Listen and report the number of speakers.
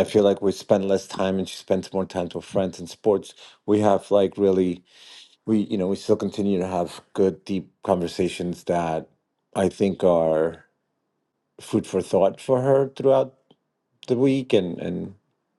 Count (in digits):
1